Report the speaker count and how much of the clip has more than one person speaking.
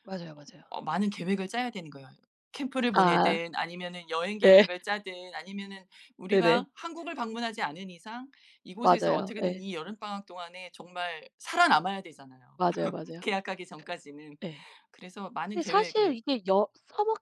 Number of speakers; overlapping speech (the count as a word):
two, about 15%